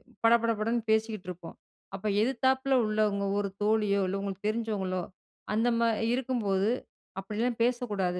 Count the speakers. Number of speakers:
1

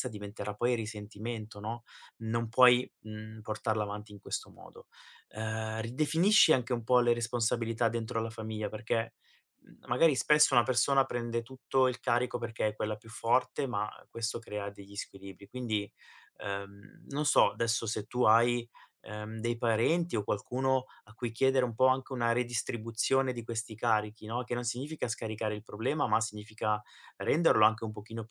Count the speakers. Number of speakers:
1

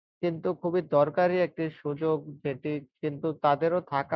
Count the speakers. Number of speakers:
1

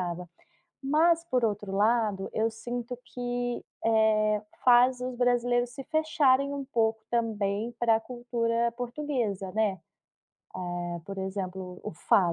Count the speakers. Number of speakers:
1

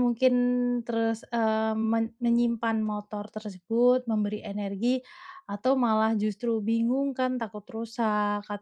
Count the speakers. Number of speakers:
1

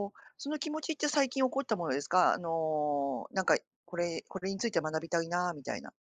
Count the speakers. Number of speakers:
1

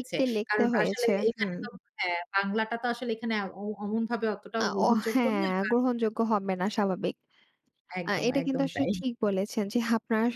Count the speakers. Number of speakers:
2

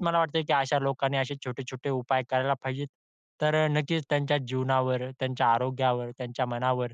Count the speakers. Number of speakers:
1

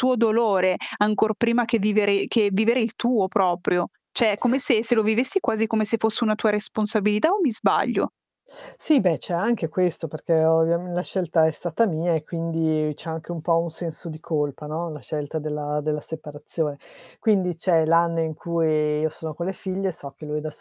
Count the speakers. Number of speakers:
2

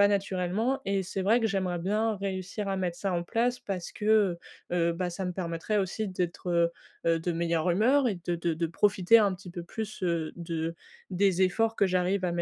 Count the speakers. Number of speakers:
1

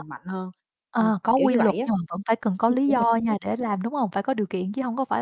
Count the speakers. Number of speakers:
2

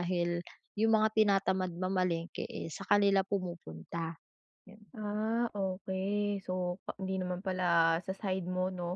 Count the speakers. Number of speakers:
2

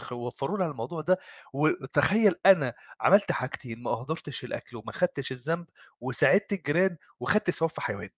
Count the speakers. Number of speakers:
1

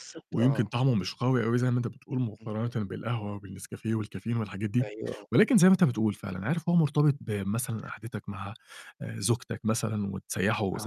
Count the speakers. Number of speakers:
2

